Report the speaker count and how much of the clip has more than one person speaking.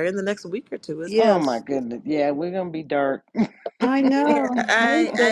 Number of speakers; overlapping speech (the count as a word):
three, about 27%